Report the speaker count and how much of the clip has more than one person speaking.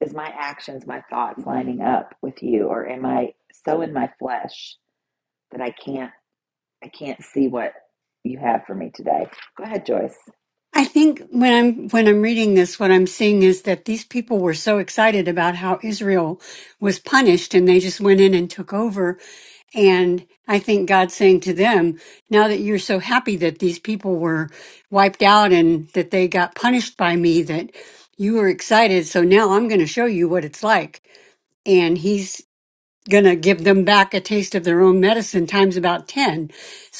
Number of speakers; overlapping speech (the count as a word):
two, no overlap